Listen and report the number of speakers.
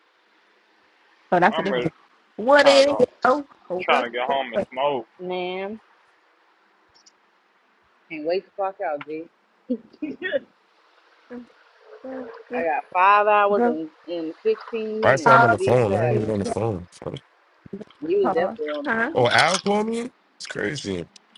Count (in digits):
4